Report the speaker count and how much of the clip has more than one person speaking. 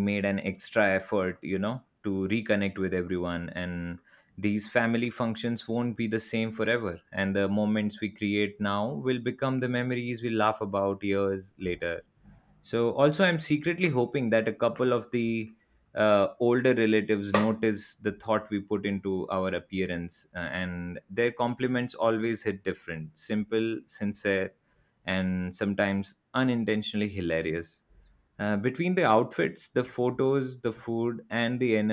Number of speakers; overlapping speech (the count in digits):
1, no overlap